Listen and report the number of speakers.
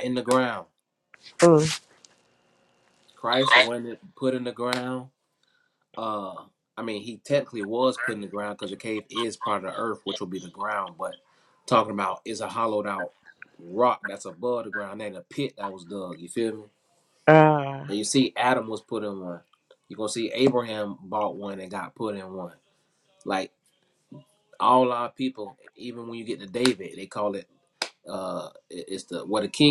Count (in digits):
2